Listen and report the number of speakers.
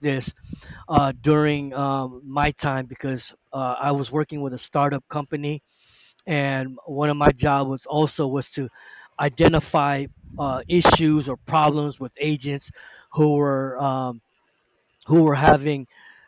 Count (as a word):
one